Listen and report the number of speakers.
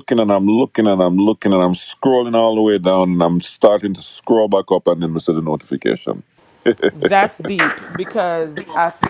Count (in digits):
2